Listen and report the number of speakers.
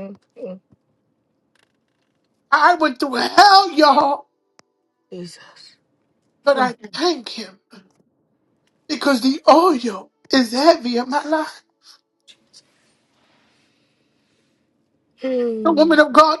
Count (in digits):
2